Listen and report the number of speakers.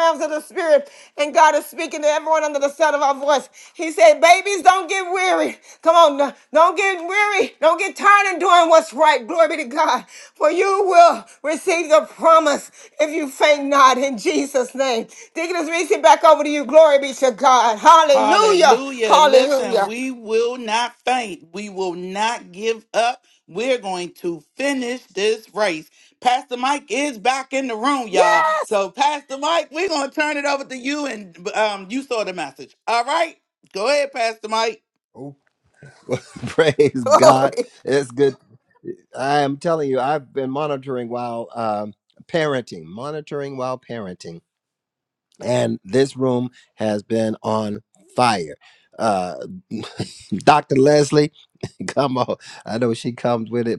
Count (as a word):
three